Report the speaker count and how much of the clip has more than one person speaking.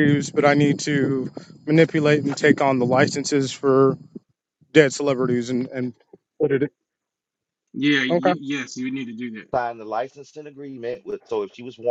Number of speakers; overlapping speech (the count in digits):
3, about 2%